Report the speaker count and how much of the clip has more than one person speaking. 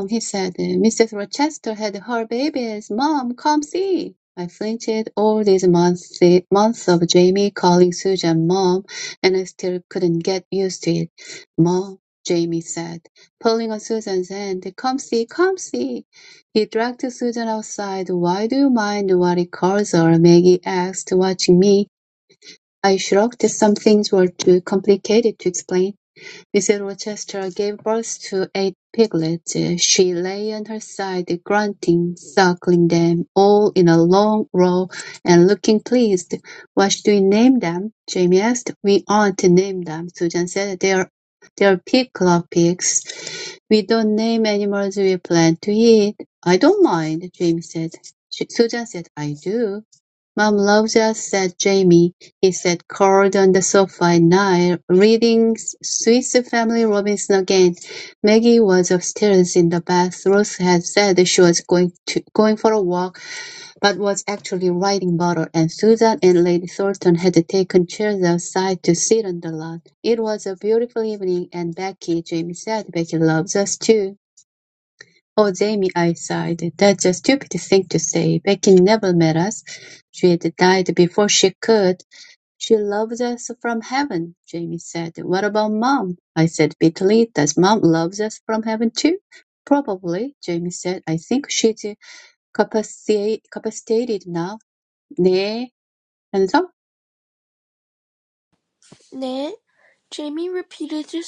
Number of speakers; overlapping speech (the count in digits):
2, no overlap